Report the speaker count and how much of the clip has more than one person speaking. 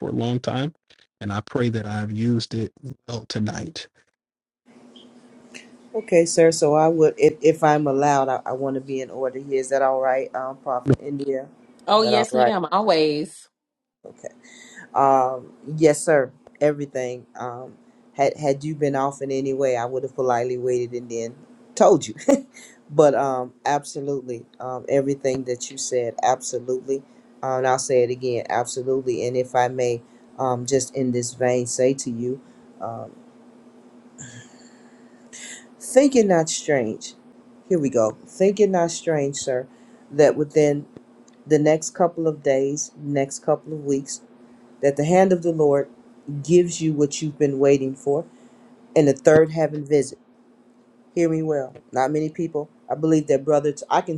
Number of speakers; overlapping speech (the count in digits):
3, about 1%